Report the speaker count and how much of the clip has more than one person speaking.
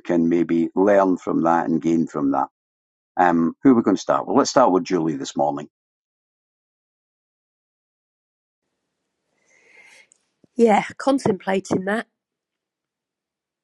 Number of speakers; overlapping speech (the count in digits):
2, no overlap